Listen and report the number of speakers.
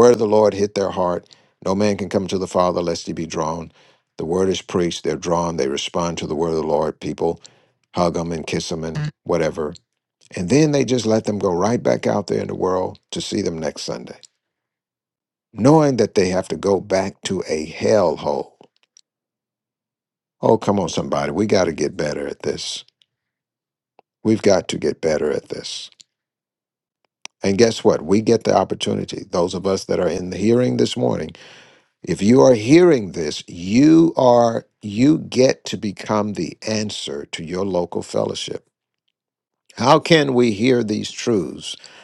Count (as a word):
one